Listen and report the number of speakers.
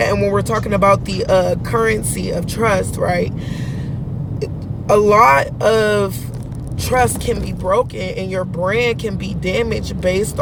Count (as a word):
one